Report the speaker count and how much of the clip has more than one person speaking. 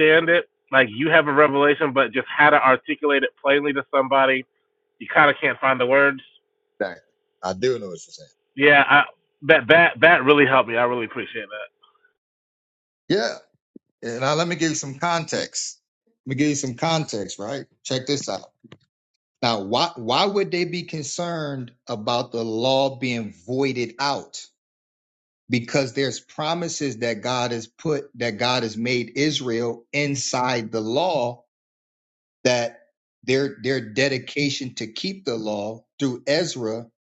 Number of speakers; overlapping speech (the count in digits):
2, no overlap